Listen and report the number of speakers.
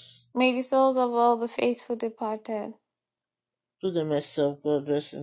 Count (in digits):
2